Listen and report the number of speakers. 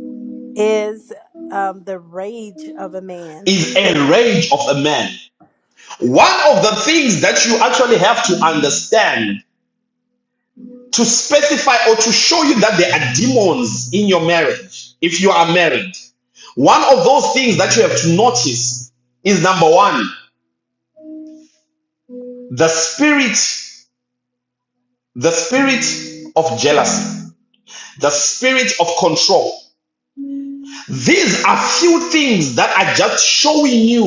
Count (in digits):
2